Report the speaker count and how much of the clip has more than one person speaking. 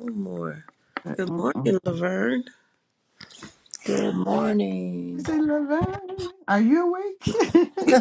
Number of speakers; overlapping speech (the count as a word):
three, about 7%